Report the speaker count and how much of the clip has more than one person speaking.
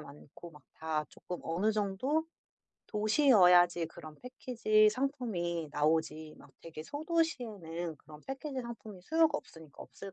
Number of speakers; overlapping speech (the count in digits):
1, no overlap